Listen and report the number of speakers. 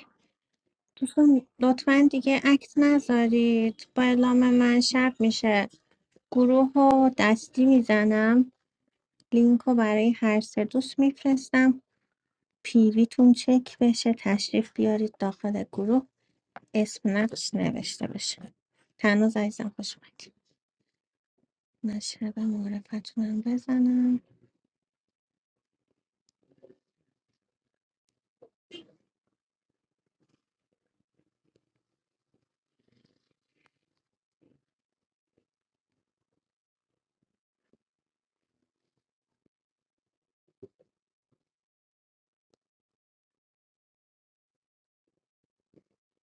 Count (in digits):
1